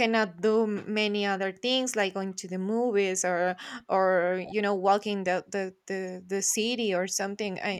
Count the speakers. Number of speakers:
1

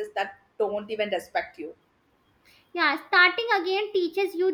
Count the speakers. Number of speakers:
2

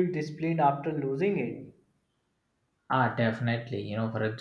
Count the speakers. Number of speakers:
2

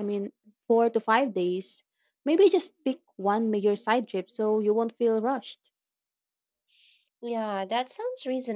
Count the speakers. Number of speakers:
2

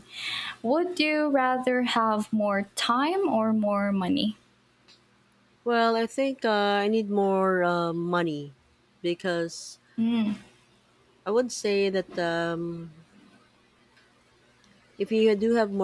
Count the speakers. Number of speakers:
2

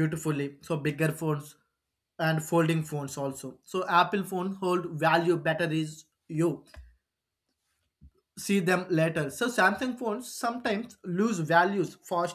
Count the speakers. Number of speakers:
1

